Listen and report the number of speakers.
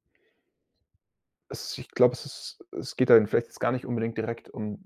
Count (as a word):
one